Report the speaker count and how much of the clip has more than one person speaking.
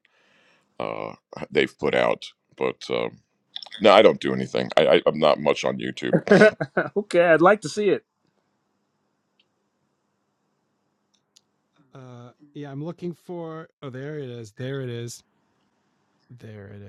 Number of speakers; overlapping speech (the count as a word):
three, no overlap